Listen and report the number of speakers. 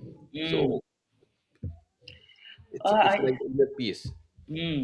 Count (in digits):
2